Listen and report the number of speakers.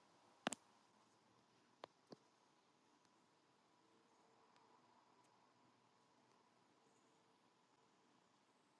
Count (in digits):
0